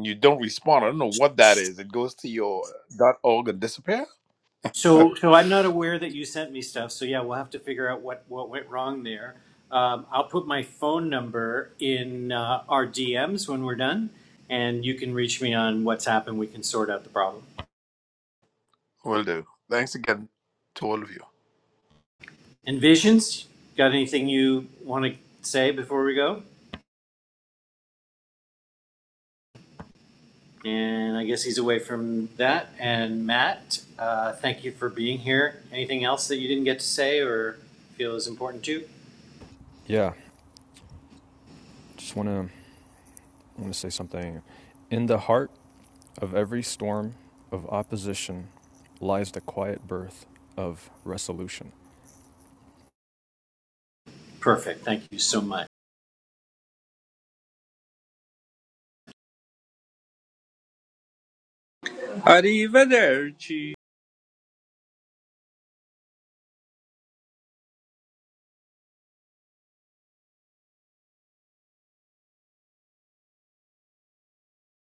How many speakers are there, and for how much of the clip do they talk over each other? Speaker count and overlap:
4, no overlap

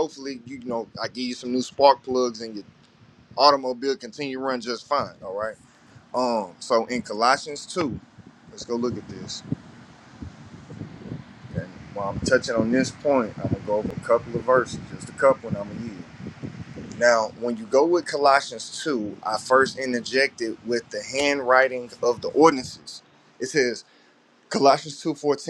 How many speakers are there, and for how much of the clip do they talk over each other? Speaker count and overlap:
1, no overlap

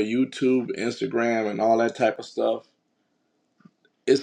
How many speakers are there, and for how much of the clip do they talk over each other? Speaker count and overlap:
1, no overlap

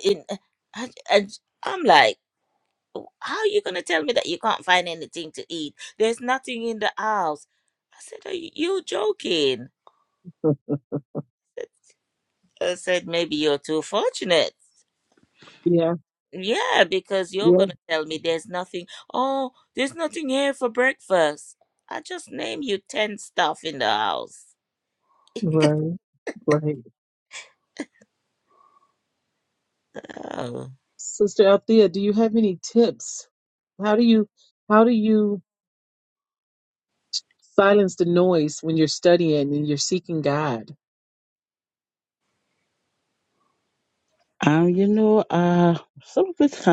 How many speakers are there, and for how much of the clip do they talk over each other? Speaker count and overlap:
3, about 1%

